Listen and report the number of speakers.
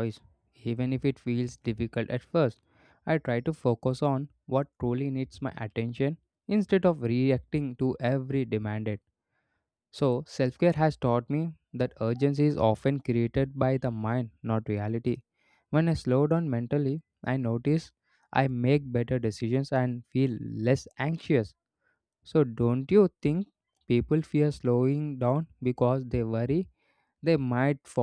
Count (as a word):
one